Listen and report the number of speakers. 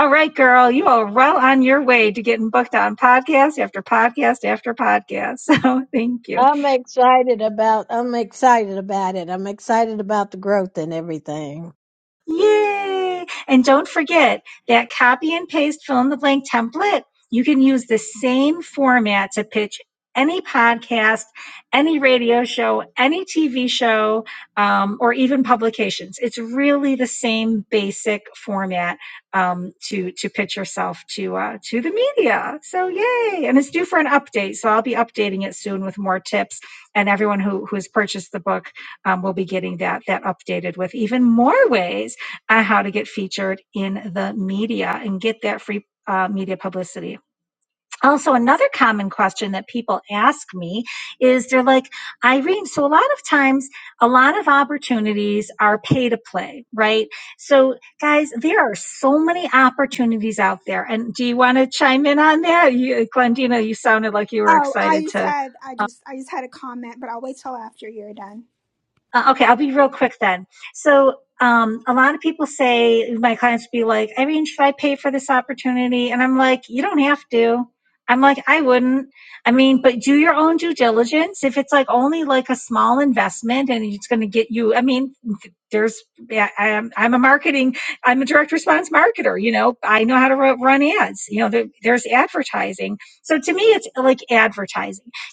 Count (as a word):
three